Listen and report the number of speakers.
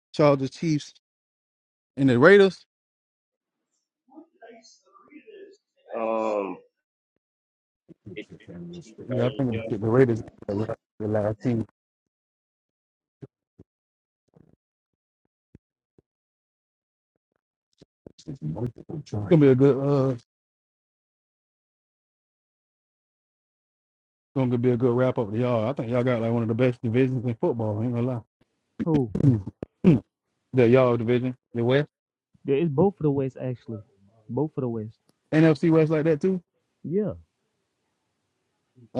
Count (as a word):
three